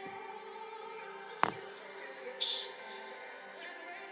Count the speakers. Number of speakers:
0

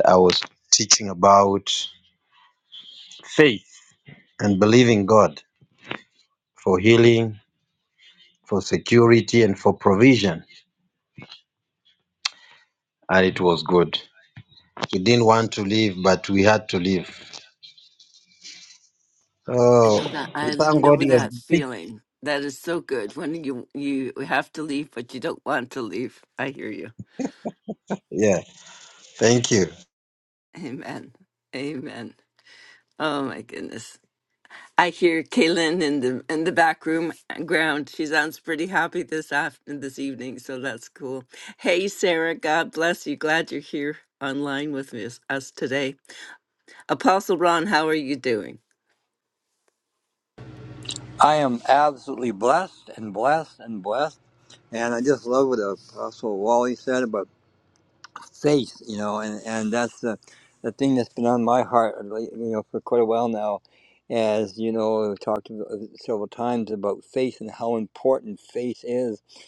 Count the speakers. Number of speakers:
3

